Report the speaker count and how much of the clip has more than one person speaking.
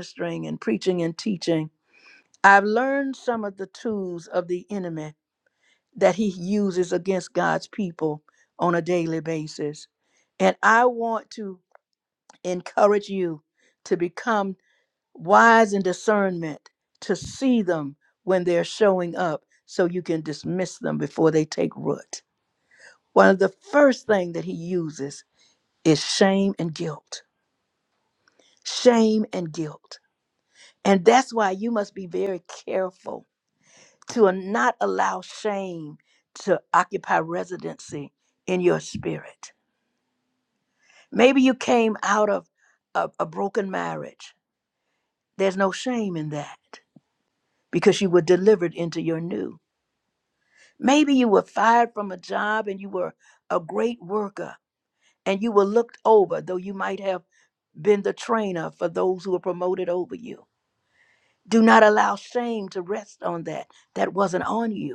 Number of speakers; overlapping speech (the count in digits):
1, no overlap